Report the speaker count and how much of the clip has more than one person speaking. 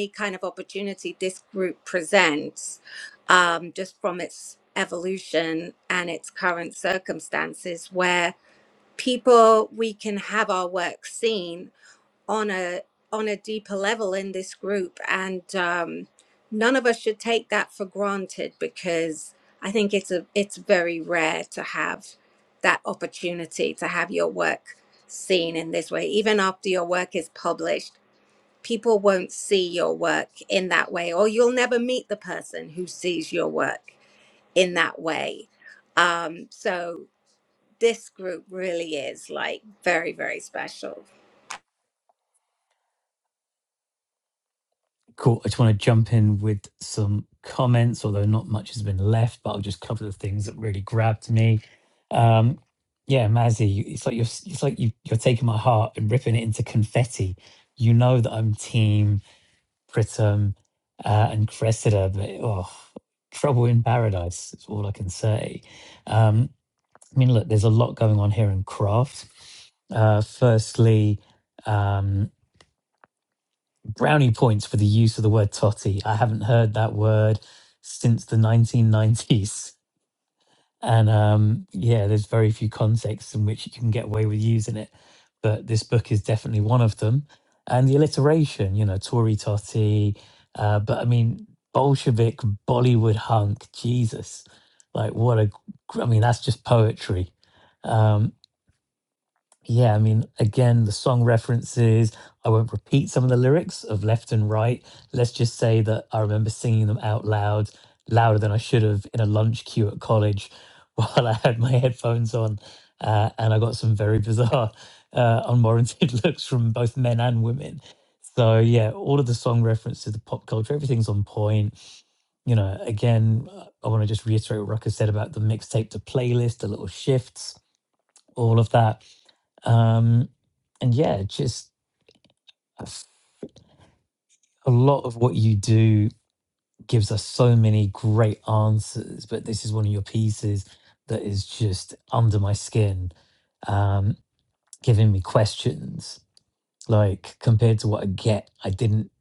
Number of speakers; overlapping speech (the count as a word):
two, no overlap